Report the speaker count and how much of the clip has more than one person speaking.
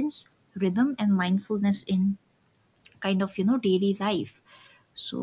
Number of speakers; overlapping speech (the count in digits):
1, no overlap